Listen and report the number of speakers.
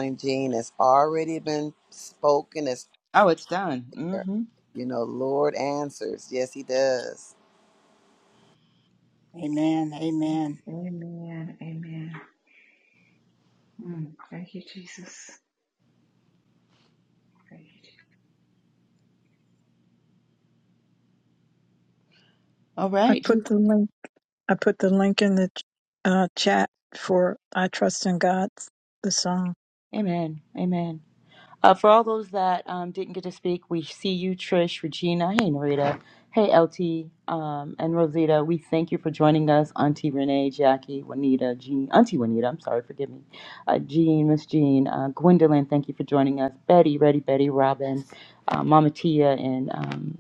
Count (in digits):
5